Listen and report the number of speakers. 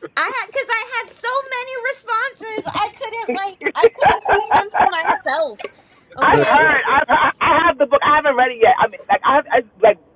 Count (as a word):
two